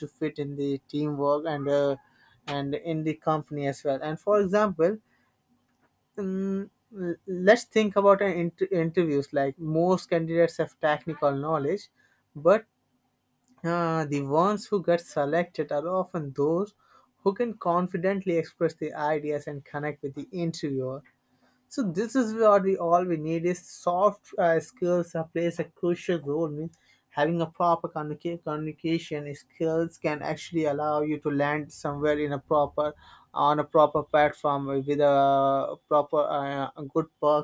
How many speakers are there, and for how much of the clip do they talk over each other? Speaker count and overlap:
one, no overlap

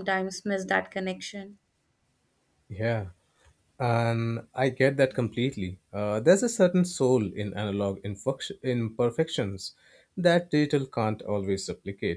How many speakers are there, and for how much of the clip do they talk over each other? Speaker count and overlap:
two, no overlap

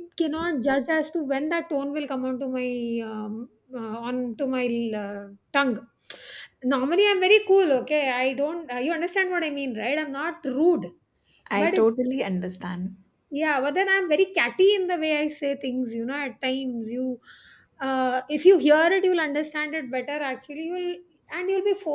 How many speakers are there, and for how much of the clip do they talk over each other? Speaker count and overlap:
two, about 1%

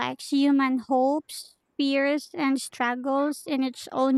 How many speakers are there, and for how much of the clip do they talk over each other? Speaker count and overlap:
one, no overlap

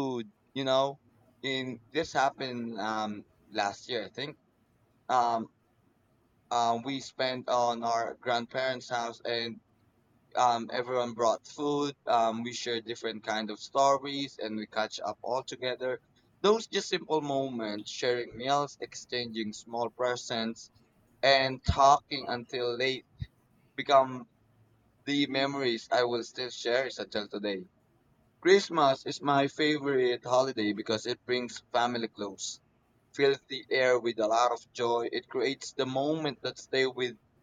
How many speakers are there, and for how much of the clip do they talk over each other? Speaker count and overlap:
one, no overlap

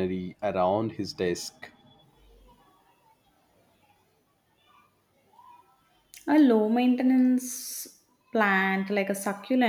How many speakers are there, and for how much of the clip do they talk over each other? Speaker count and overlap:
two, no overlap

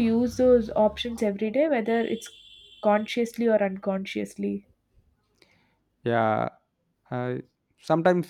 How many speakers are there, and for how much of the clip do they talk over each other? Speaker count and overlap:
two, no overlap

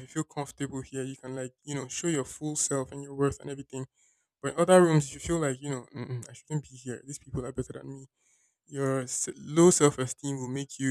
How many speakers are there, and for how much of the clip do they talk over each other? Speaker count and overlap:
one, no overlap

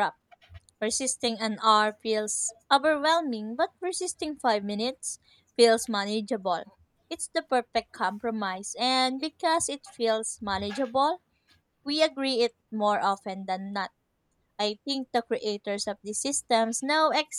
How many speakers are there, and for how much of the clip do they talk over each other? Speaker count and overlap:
one, no overlap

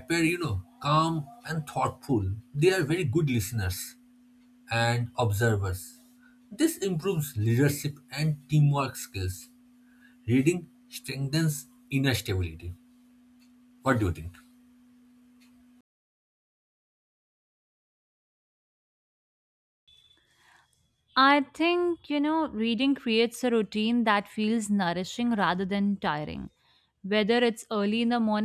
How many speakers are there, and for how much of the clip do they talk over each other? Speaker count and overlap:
two, no overlap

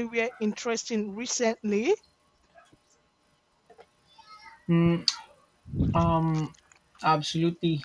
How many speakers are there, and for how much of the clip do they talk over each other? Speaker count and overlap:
two, no overlap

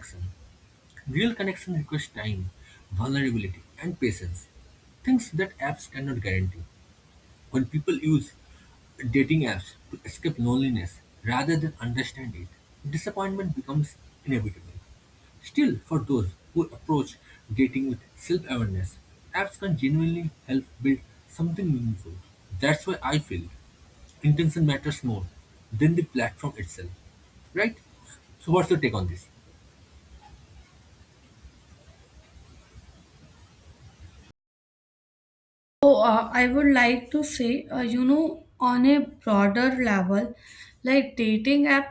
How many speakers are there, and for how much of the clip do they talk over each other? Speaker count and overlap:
two, no overlap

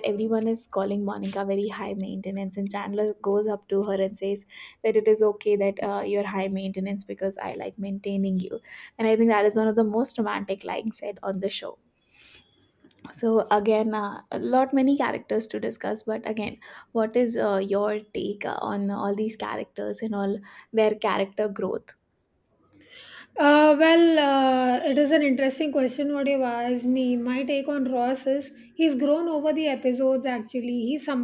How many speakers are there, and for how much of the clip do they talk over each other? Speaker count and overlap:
two, no overlap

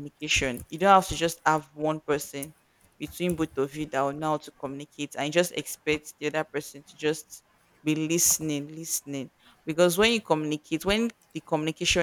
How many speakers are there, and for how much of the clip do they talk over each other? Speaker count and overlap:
one, no overlap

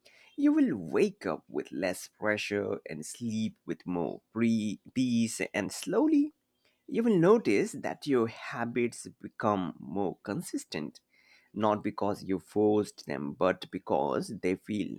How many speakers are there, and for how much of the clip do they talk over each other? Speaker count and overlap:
one, no overlap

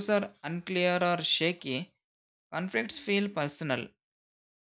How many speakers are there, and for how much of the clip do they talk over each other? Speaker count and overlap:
one, no overlap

